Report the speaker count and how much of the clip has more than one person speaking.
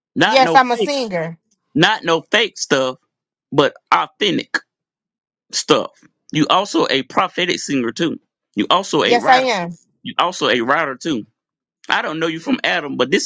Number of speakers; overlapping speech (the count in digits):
2, about 7%